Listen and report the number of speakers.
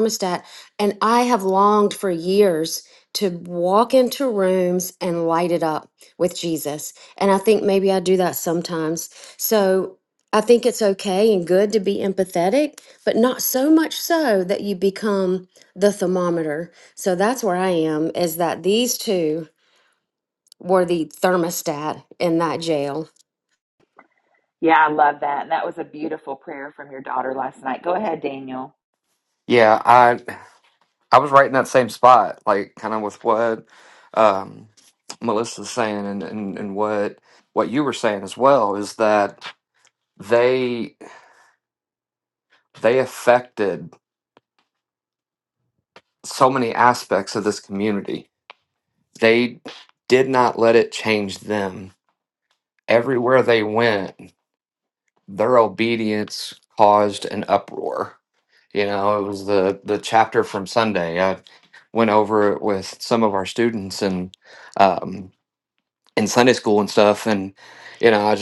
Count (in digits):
3